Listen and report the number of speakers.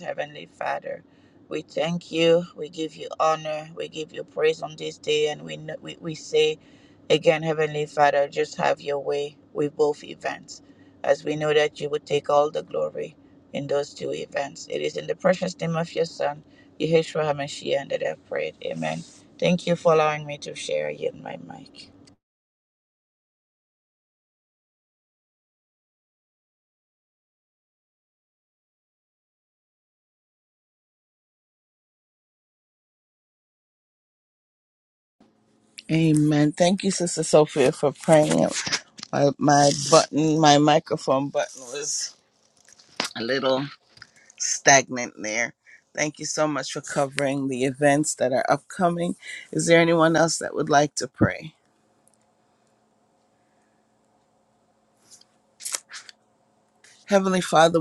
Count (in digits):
2